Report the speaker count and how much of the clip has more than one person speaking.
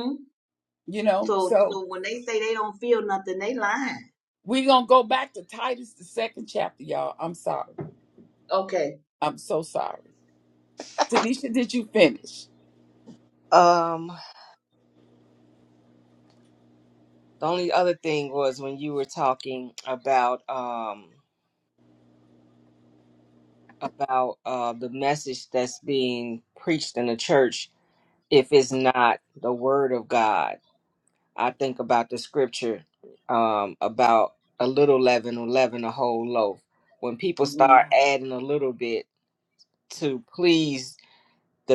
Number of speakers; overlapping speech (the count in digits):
3, about 2%